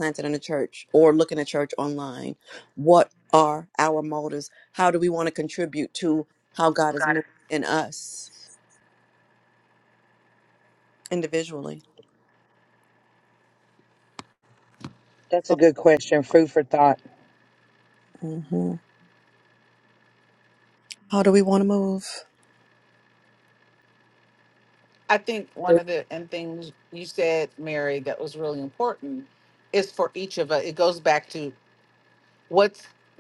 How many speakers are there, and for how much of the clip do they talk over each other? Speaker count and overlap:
three, under 1%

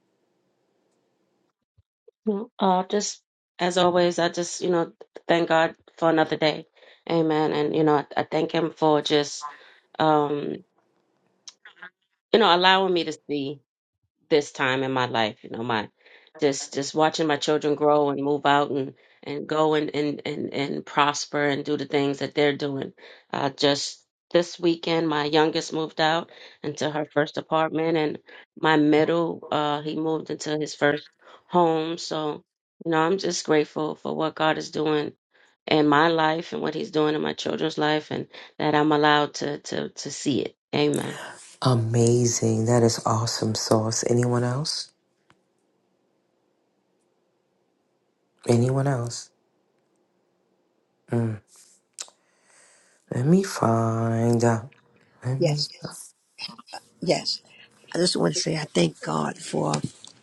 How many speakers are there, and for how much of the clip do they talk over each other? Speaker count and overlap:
three, under 1%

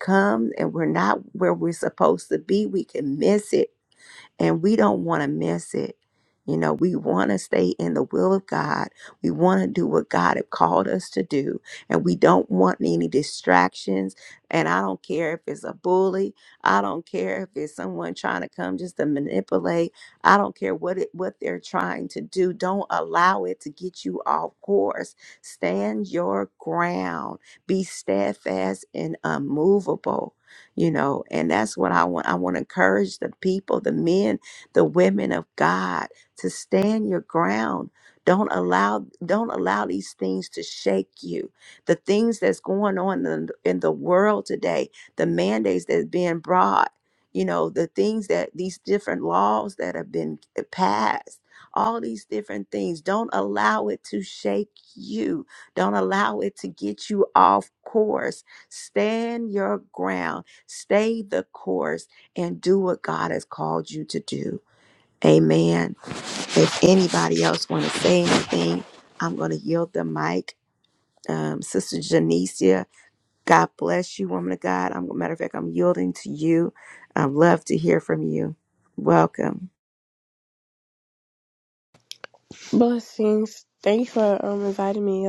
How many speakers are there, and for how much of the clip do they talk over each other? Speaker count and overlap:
two, no overlap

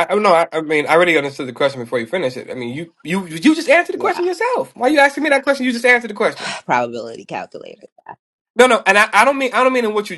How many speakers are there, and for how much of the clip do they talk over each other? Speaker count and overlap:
two, about 4%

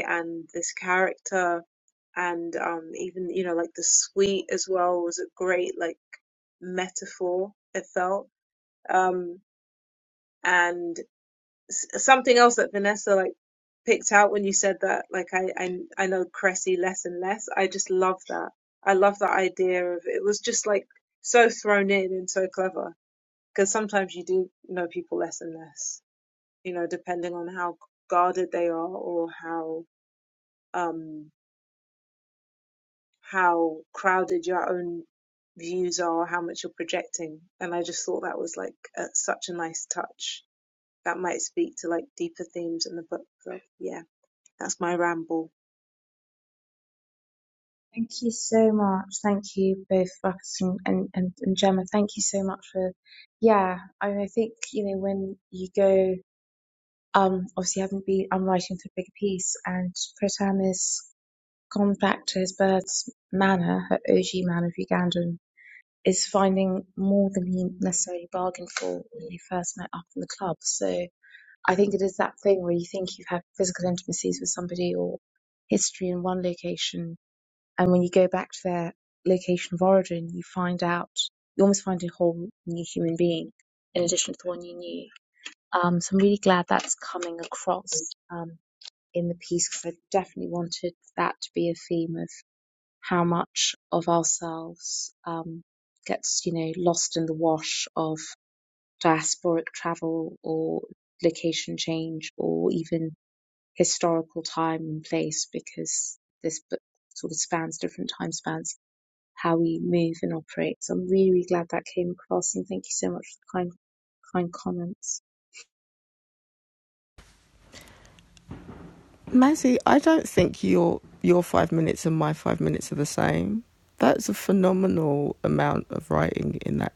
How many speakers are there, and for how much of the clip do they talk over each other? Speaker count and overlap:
three, no overlap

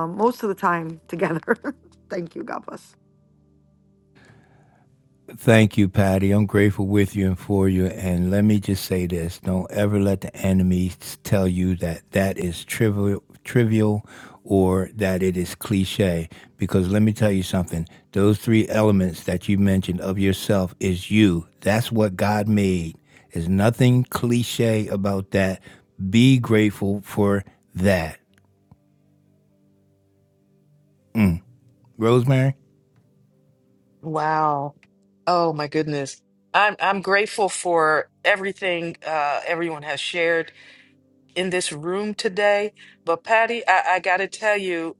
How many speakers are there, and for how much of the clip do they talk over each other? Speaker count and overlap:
three, no overlap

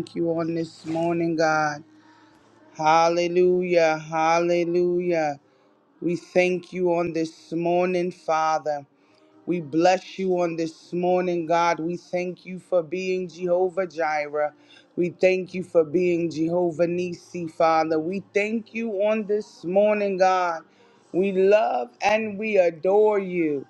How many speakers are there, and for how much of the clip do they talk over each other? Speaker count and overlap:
one, no overlap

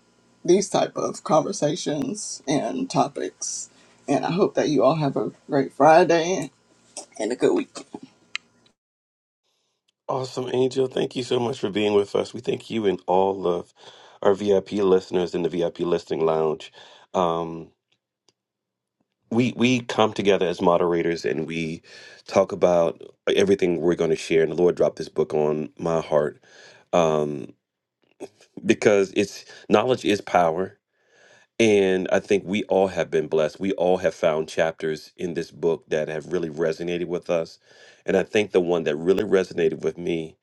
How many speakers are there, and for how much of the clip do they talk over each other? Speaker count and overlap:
two, no overlap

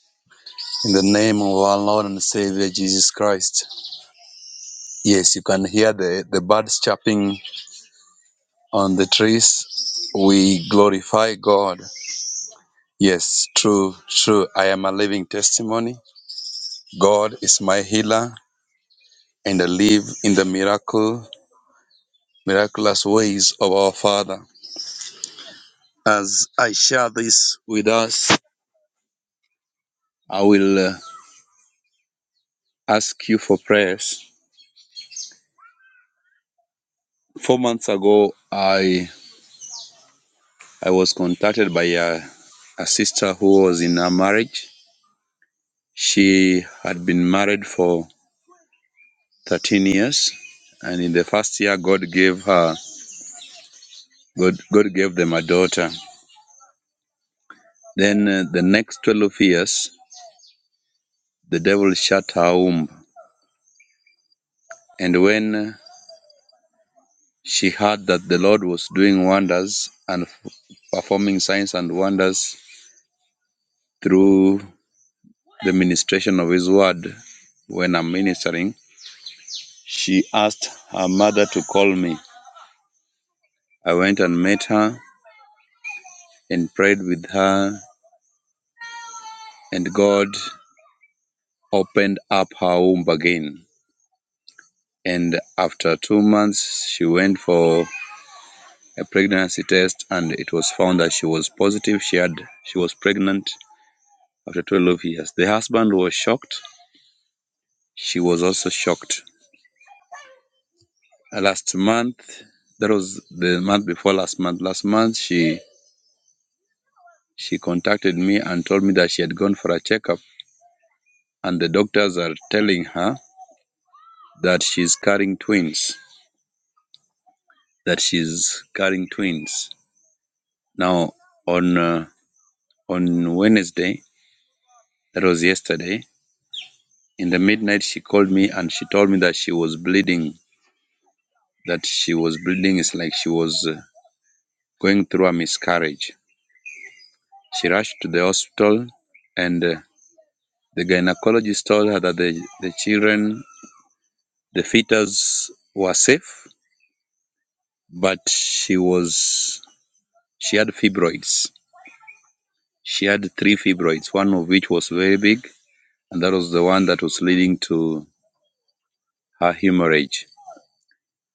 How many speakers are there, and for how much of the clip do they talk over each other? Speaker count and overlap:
one, no overlap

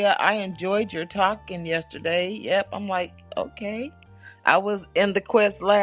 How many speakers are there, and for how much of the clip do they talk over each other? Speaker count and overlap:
one, no overlap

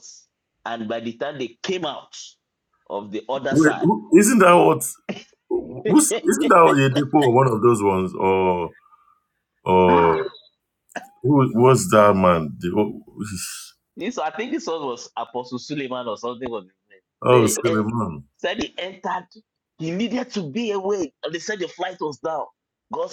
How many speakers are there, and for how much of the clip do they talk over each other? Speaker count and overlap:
two, about 5%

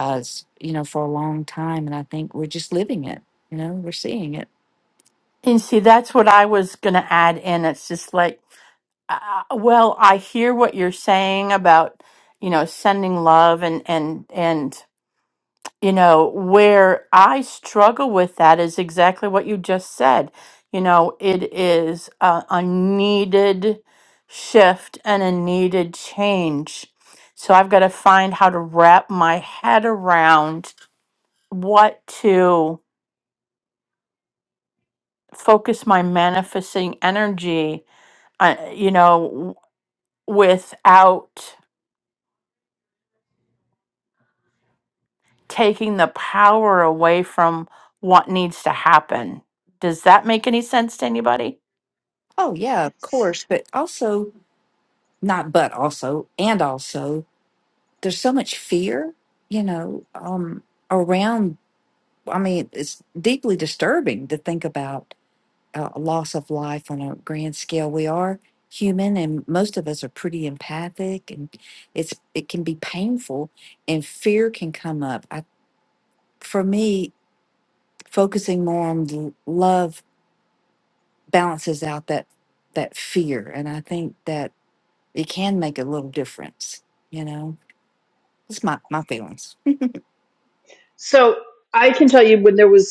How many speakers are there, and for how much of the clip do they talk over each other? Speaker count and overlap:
three, no overlap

